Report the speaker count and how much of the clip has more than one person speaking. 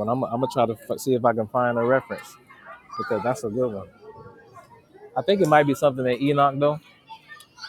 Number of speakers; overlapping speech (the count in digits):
1, no overlap